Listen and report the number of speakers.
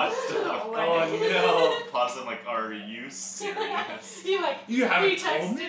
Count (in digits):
3